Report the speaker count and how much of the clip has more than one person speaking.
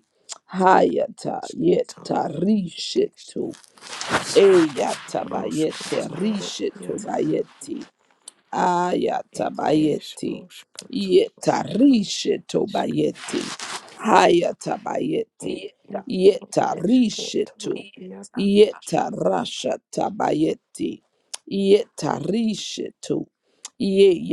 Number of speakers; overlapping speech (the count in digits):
2, about 19%